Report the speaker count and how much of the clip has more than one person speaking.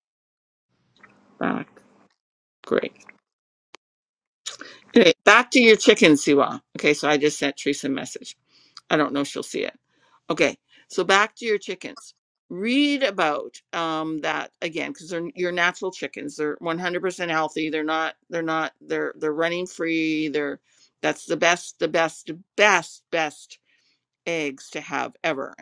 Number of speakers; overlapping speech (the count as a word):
one, no overlap